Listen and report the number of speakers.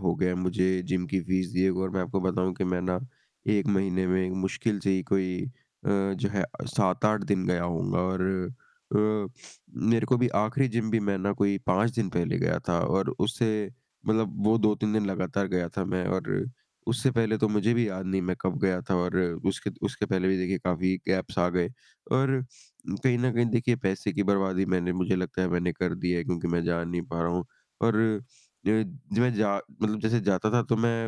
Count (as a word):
one